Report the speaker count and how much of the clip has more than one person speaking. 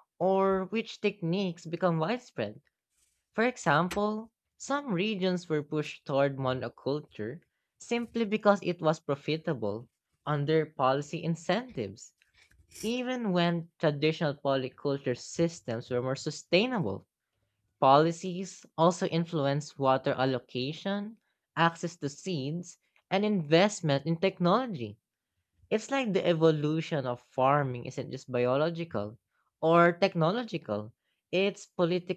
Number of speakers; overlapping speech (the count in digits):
1, no overlap